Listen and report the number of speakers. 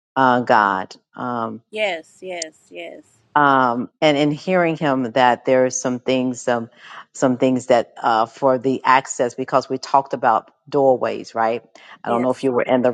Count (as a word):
two